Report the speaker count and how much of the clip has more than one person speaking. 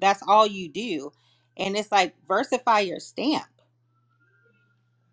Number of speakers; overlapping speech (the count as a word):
one, no overlap